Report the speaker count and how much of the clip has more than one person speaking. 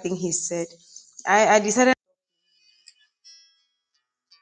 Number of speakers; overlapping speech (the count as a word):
one, no overlap